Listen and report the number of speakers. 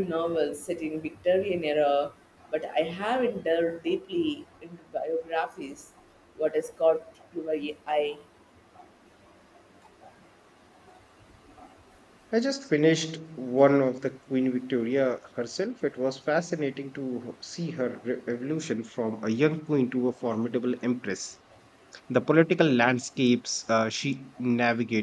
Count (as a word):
two